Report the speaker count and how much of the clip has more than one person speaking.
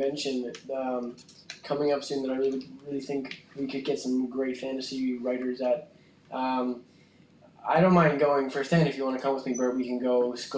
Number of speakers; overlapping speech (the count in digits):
1, no overlap